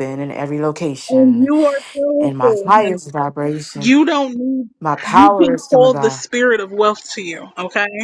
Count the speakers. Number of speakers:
two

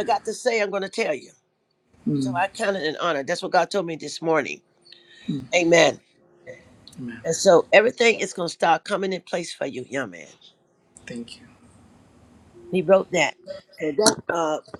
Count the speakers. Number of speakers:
two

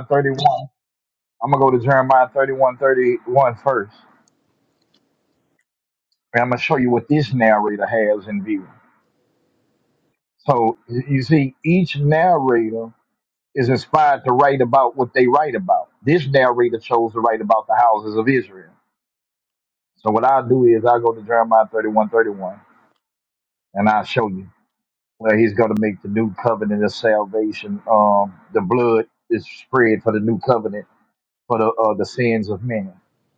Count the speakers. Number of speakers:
one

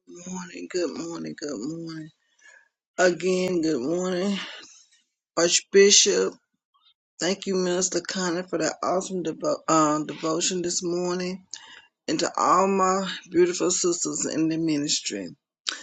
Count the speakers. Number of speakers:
one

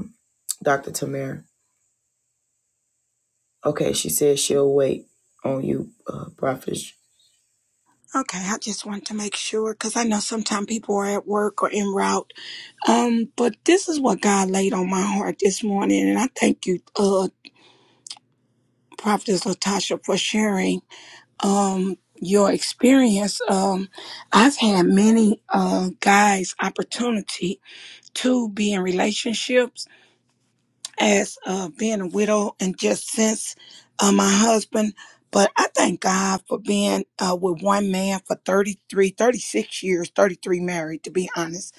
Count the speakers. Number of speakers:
two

